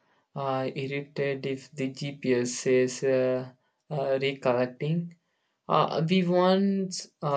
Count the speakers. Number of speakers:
one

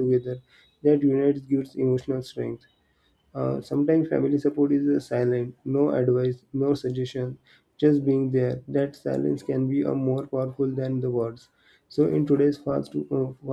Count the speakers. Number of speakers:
one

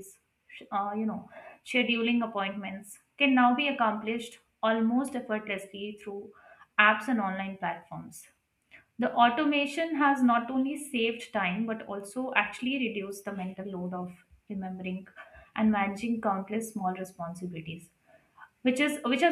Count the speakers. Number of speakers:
one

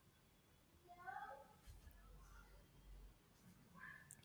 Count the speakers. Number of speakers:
zero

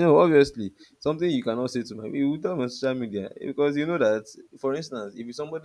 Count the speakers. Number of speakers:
one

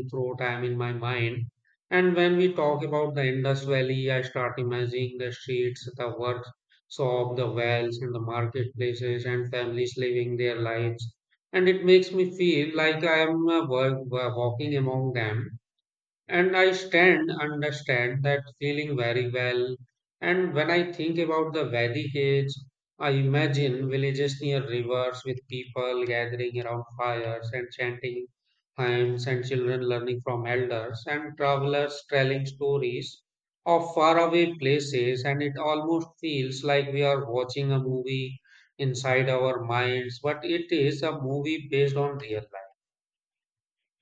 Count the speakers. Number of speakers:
one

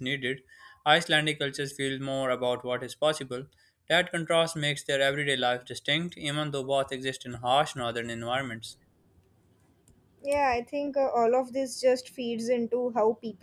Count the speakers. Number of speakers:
two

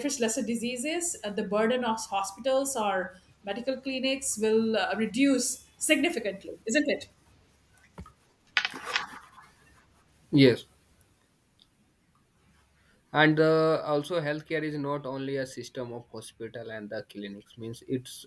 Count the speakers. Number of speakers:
two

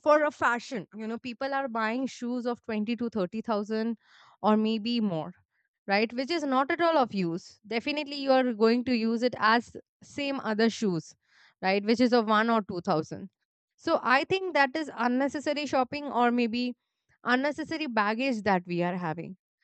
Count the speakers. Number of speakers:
one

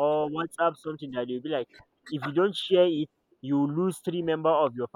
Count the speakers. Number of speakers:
one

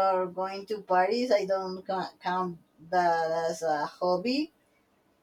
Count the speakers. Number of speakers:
one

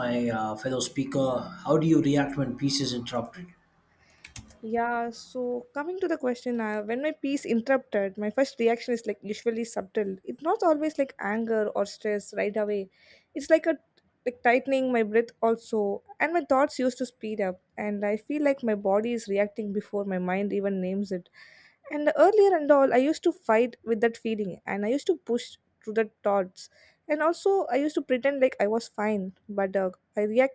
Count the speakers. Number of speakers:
two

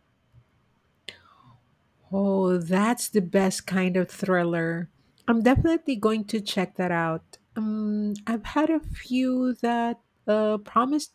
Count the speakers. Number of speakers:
one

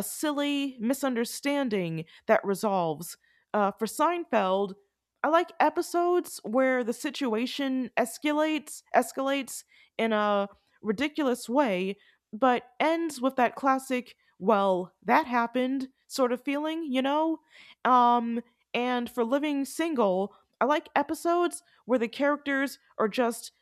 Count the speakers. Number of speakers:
one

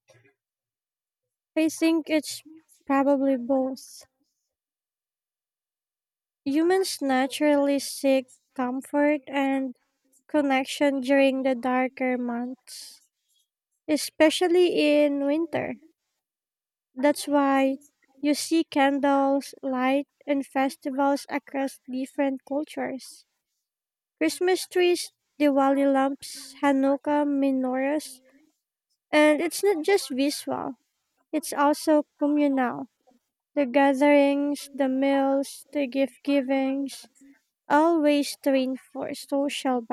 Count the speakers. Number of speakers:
one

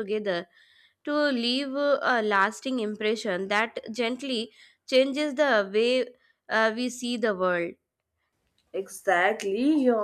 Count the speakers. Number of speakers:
two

